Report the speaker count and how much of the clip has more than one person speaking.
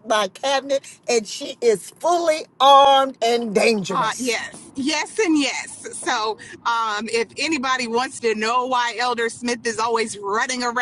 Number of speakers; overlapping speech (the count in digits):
2, about 2%